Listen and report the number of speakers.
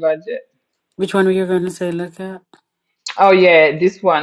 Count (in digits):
2